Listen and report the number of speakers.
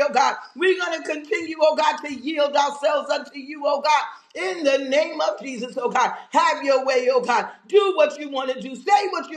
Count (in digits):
1